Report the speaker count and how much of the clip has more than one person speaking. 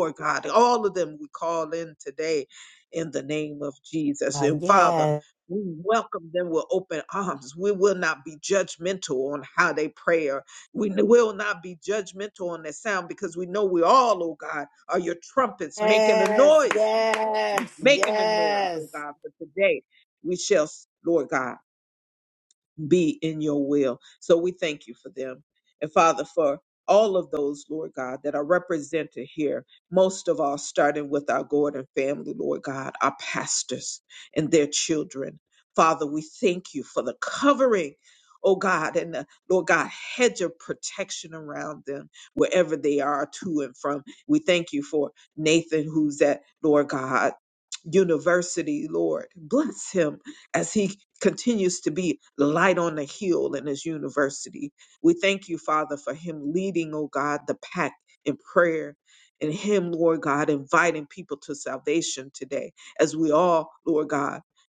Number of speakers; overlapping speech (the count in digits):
2, about 4%